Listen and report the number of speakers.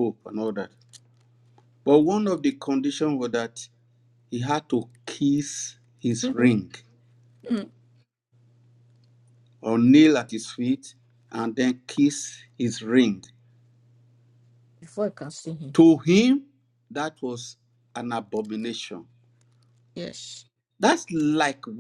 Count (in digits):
2